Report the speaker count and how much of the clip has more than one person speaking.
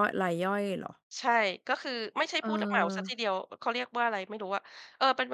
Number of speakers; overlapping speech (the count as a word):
two, about 12%